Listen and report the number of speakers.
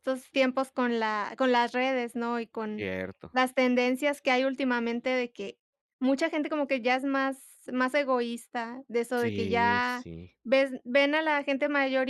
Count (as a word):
two